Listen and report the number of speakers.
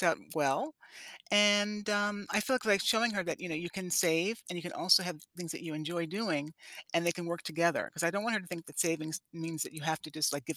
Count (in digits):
1